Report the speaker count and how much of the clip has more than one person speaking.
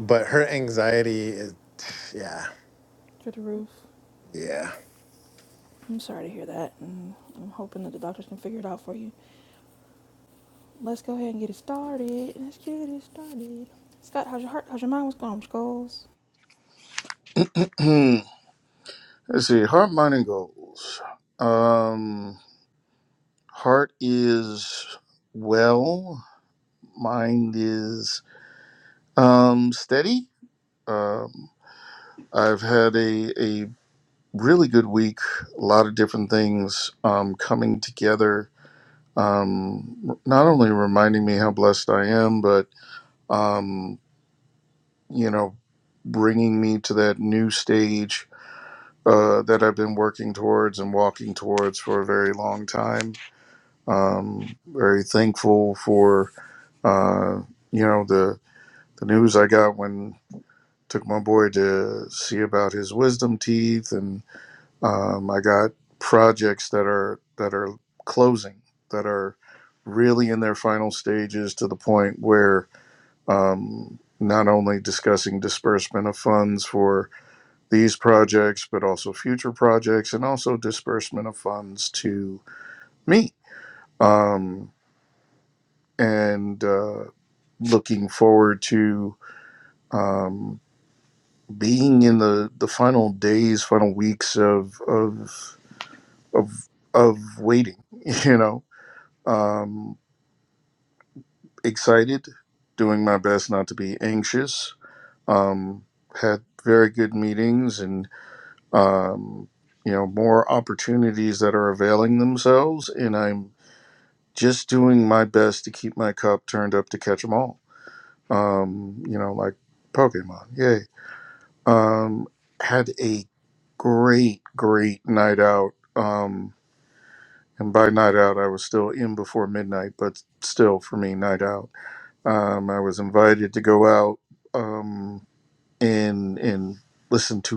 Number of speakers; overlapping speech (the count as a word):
three, no overlap